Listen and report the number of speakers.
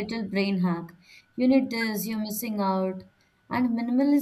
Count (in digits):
1